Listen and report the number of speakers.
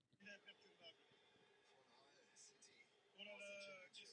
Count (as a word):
zero